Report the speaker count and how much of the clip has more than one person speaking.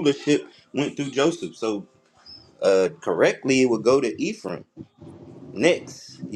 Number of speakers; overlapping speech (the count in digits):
1, no overlap